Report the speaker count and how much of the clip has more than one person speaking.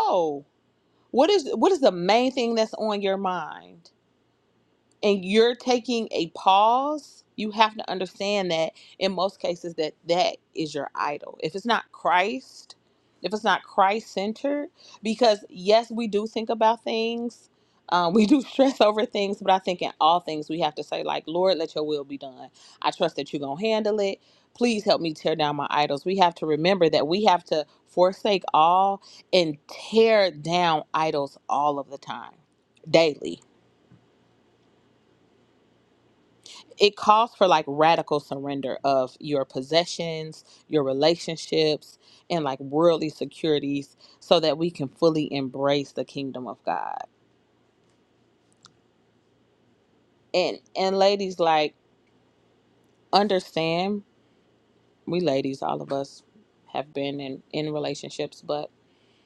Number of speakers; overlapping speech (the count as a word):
one, no overlap